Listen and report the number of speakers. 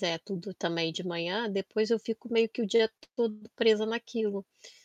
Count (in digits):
1